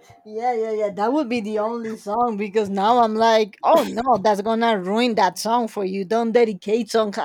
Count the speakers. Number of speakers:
one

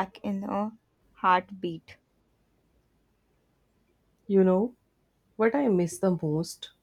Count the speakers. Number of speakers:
two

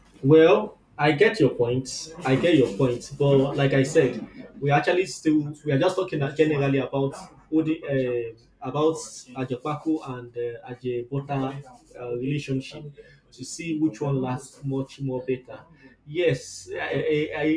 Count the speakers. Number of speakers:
one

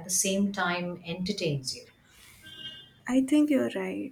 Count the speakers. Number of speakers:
two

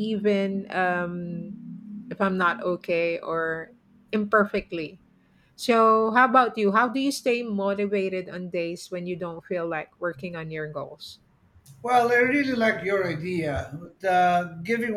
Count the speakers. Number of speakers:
two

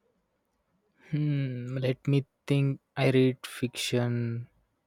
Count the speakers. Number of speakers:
one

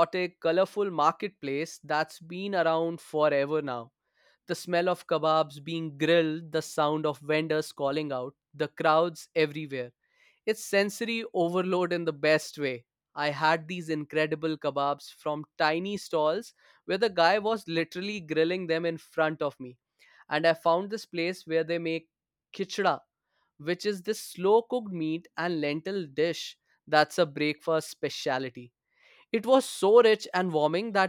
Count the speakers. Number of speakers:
one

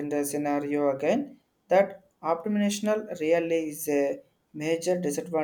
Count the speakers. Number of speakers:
one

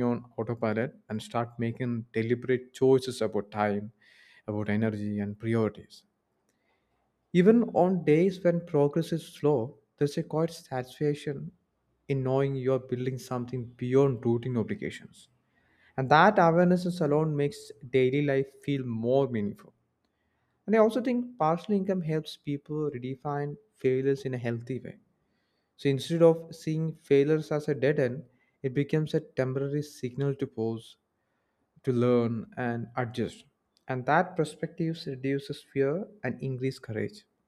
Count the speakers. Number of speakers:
one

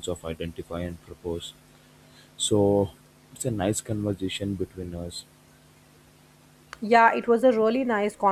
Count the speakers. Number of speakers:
two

